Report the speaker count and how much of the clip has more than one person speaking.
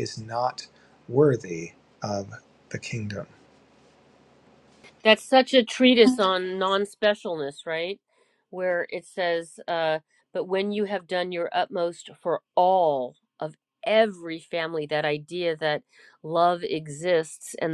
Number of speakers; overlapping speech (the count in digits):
2, no overlap